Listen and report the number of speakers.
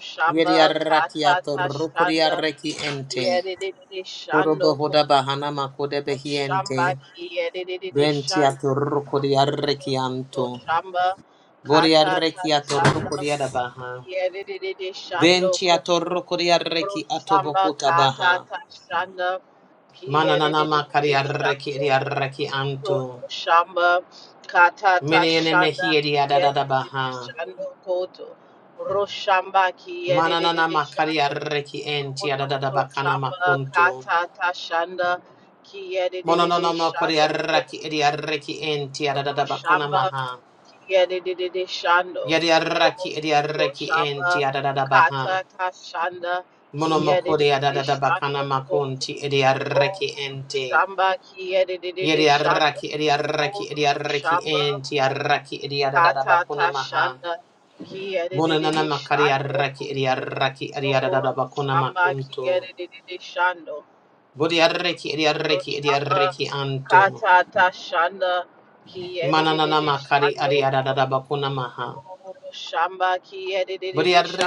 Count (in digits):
2